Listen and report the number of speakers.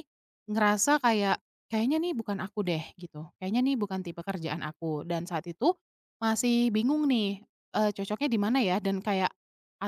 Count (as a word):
one